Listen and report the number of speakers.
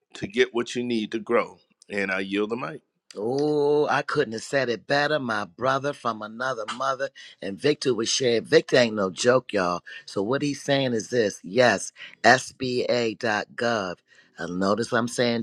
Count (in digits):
2